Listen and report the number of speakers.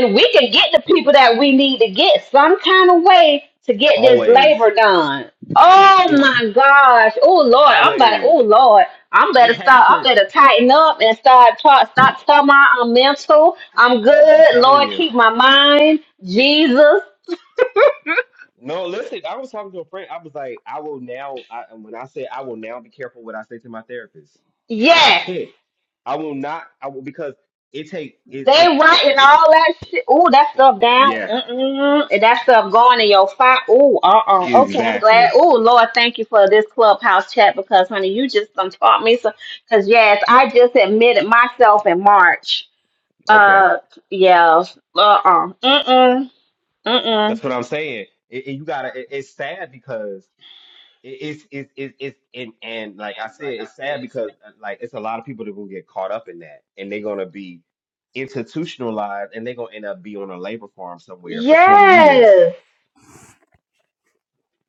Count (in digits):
2